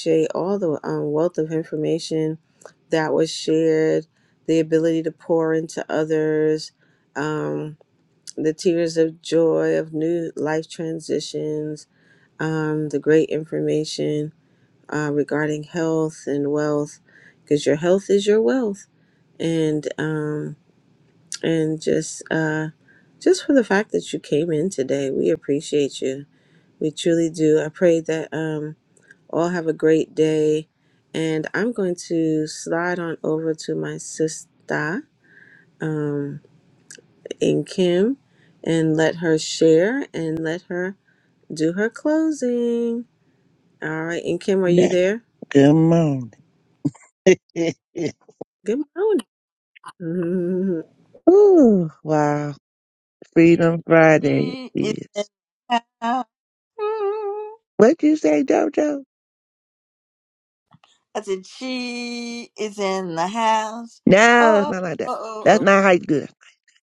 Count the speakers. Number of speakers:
three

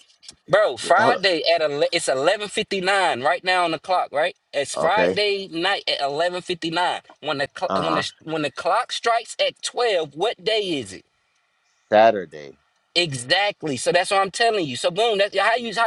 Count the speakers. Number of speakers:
two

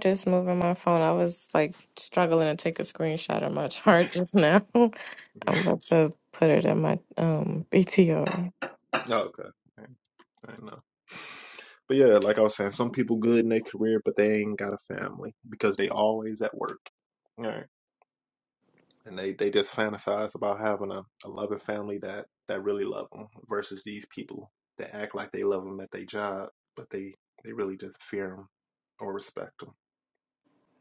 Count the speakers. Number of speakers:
two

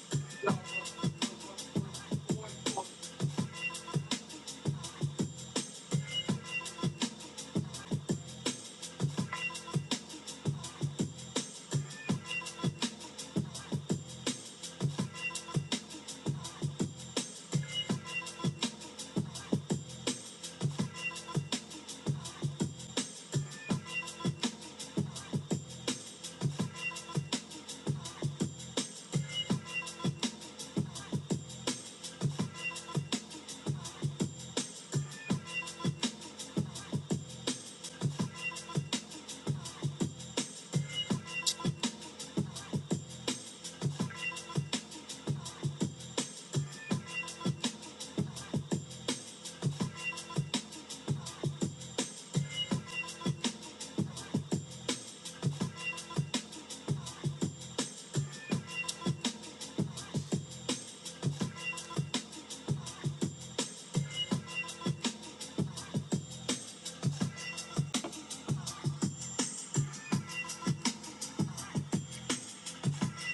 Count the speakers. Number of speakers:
zero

